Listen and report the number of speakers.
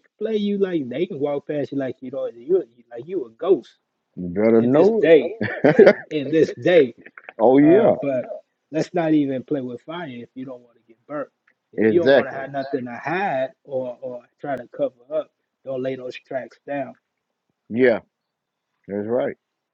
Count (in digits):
2